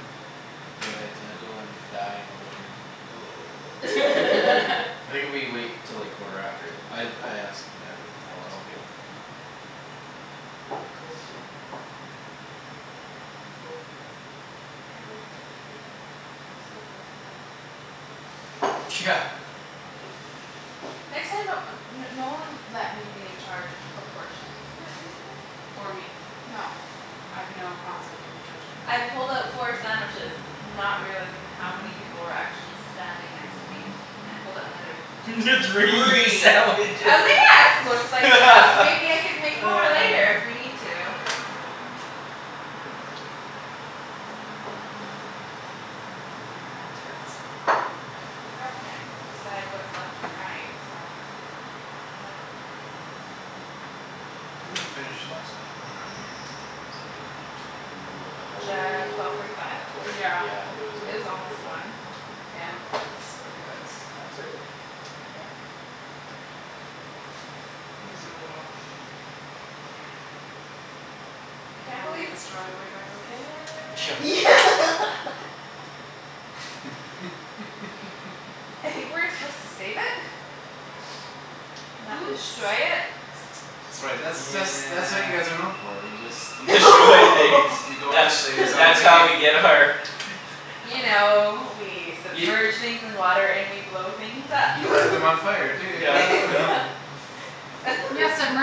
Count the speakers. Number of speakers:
4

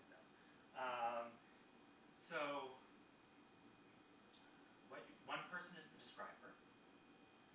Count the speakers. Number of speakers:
1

